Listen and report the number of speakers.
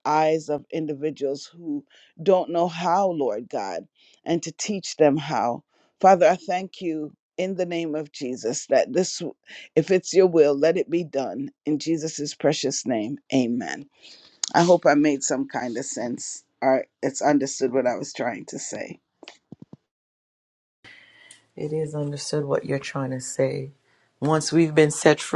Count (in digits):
2